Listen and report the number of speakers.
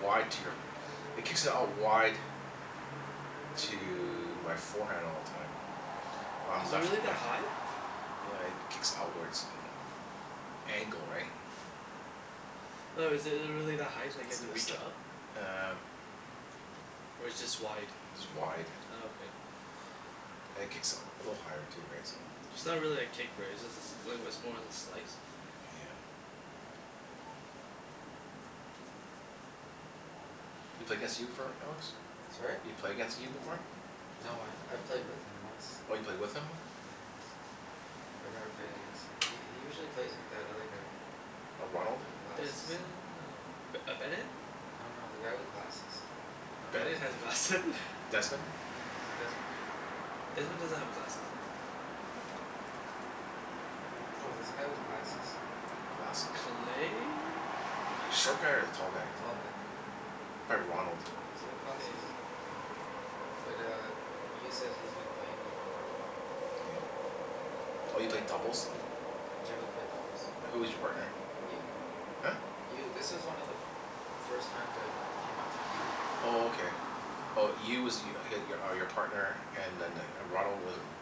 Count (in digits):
3